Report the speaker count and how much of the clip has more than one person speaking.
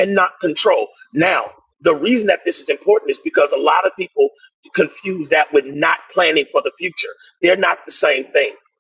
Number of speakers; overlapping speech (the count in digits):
1, no overlap